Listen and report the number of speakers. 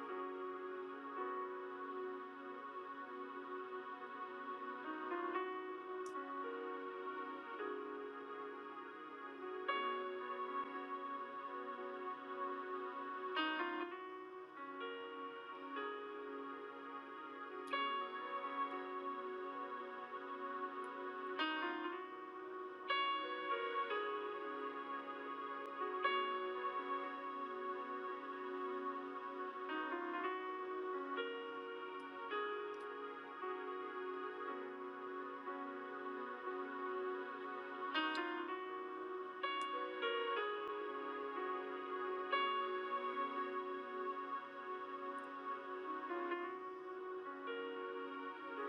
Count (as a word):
zero